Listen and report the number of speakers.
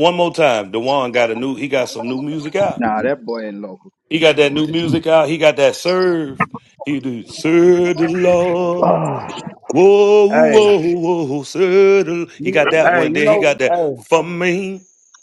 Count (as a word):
three